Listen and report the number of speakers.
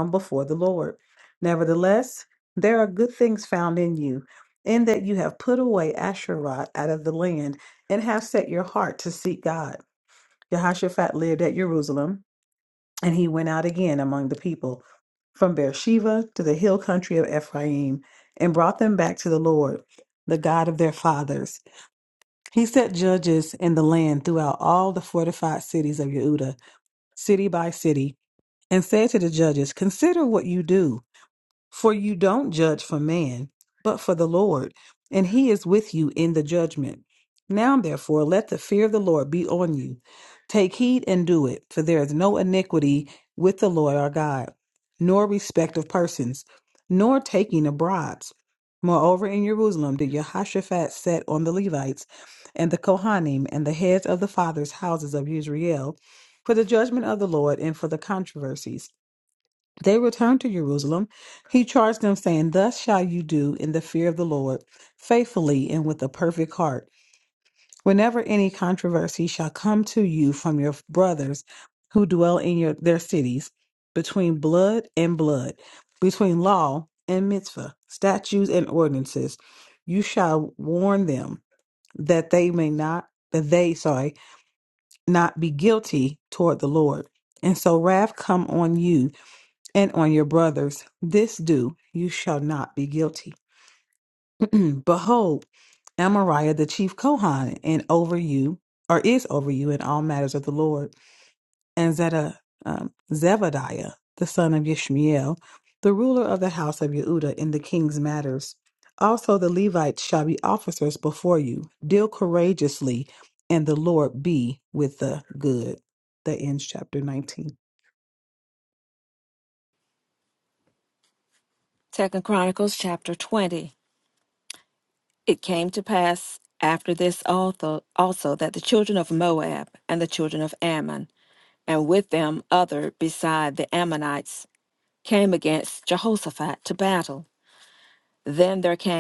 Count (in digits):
2